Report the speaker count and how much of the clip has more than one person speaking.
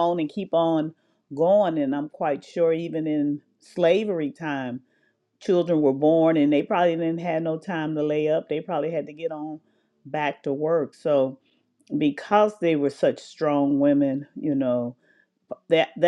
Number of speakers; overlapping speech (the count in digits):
1, no overlap